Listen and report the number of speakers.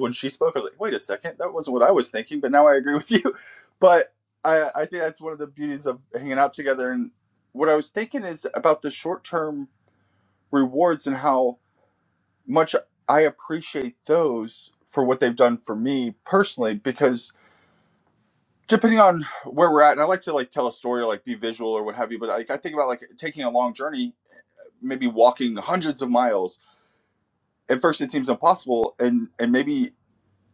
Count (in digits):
1